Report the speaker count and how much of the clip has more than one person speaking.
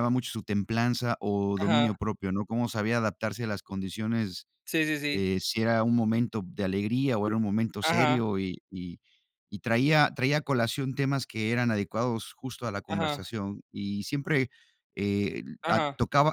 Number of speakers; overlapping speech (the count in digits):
2, about 9%